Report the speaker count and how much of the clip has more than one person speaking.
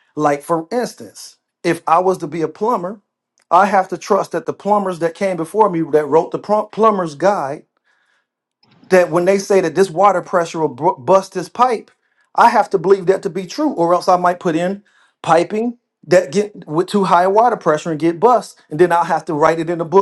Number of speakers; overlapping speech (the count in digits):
1, no overlap